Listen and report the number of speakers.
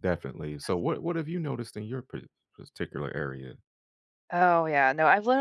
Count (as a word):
two